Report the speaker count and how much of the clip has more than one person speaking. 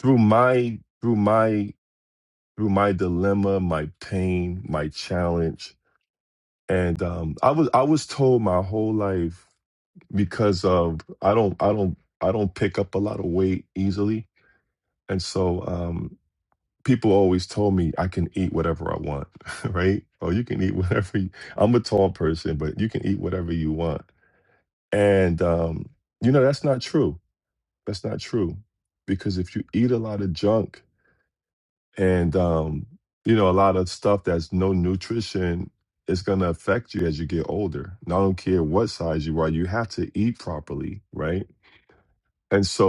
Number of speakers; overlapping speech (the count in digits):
1, no overlap